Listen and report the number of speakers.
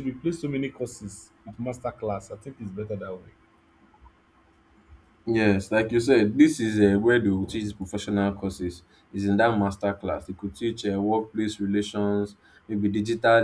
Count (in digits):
2